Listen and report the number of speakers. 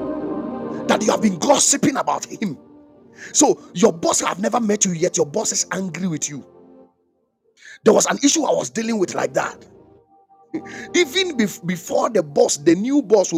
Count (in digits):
1